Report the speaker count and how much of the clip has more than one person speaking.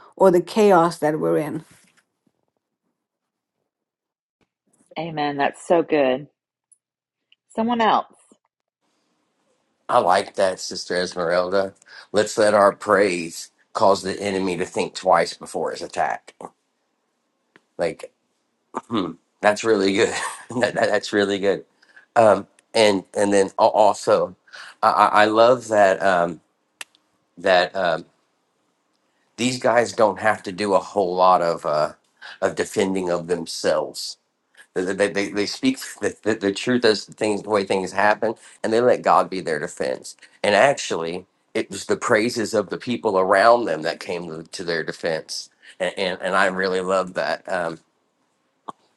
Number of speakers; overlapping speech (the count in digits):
3, no overlap